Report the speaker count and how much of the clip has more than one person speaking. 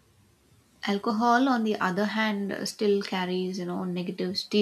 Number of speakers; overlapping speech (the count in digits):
1, no overlap